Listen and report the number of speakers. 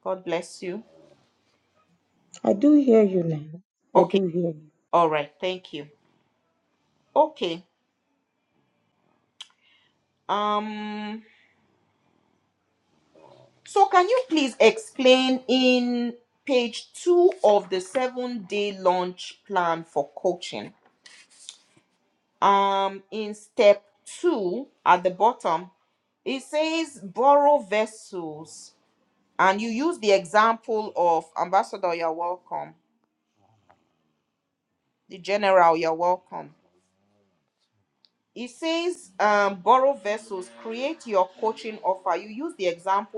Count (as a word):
two